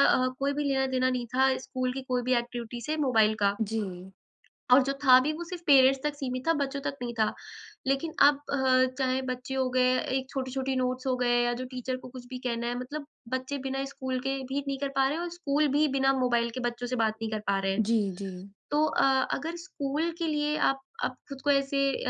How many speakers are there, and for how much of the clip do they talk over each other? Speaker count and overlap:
two, under 1%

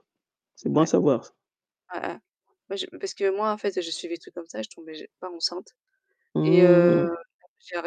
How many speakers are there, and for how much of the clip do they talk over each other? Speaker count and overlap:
two, about 10%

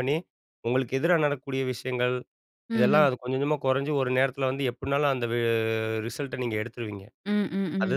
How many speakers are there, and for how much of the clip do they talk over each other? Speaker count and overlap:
two, about 7%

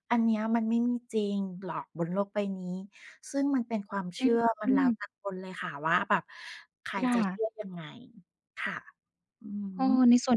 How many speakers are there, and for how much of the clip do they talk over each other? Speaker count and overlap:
two, about 5%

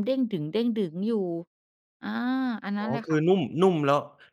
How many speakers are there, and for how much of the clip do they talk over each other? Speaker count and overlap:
two, about 9%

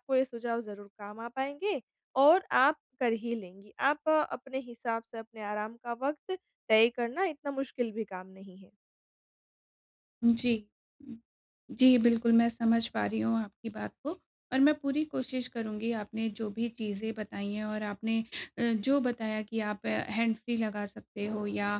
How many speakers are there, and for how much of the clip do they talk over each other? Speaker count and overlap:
two, no overlap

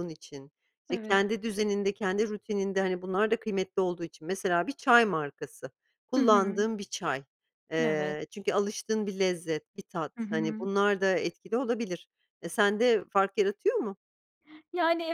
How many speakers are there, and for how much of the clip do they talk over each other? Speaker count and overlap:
two, about 10%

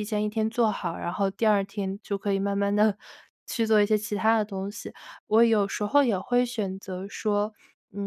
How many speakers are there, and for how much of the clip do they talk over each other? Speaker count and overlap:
one, no overlap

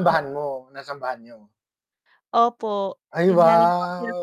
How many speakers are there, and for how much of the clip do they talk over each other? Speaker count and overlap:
two, about 26%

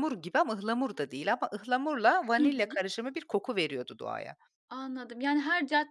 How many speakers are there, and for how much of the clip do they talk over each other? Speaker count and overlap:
two, about 6%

